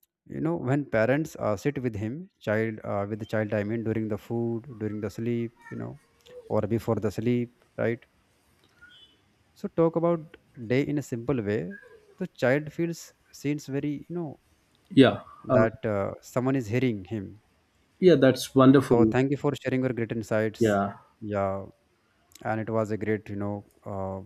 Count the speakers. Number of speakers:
2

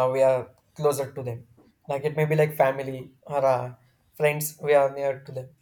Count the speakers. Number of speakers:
1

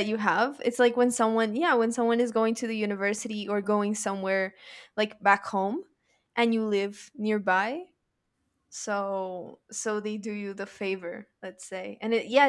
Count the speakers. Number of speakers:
1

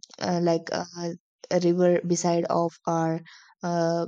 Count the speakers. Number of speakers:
1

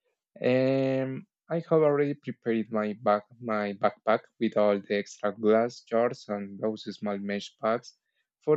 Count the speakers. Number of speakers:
1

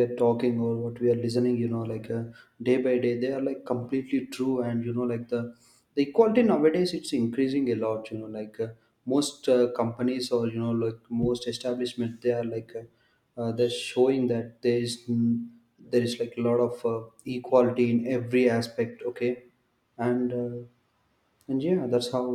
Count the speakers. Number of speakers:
1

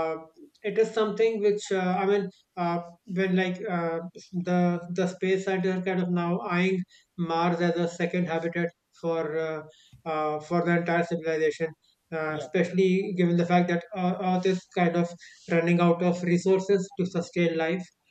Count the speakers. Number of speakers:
1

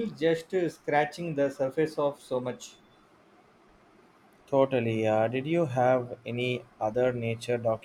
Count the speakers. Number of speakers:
2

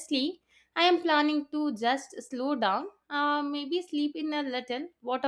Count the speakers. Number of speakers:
1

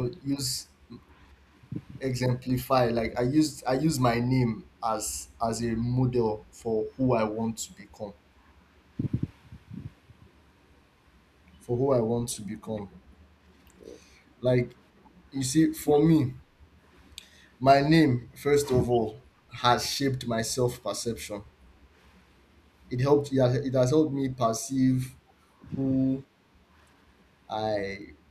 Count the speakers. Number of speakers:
1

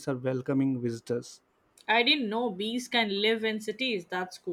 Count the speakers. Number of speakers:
2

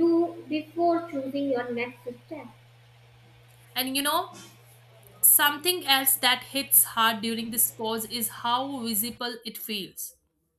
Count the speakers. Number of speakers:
2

